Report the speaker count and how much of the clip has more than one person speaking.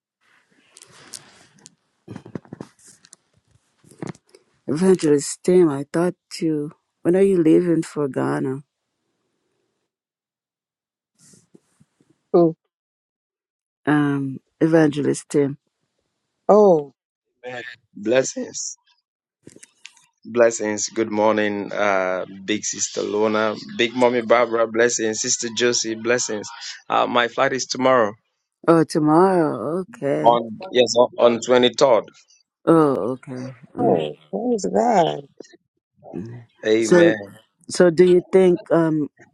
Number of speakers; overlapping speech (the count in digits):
3, about 2%